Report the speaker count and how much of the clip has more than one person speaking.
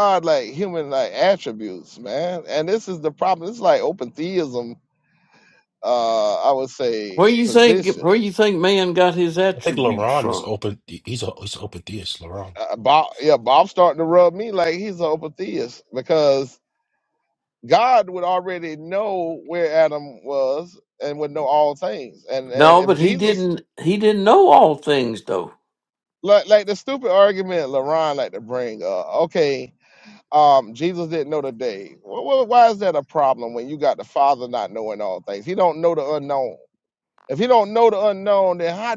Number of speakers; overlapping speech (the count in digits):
3, about 7%